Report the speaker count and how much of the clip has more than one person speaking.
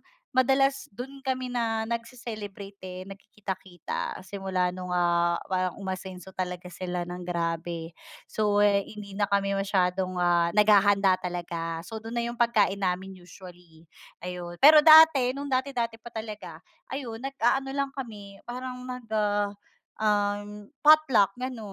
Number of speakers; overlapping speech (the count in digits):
1, no overlap